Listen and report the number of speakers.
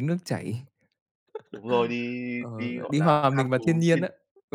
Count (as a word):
two